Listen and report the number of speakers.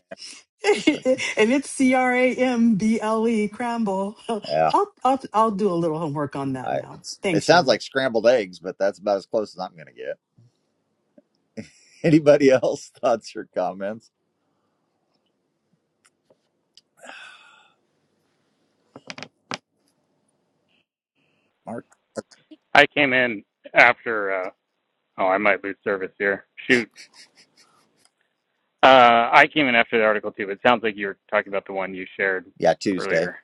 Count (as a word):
three